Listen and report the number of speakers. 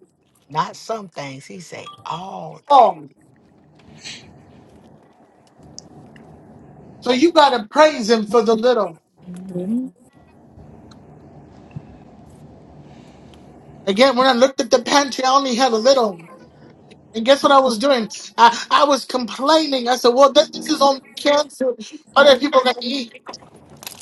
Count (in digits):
2